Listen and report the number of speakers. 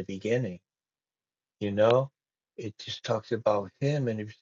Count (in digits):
1